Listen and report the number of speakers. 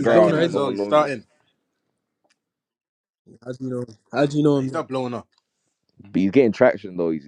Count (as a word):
three